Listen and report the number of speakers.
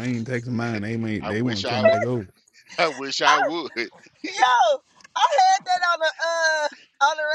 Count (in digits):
3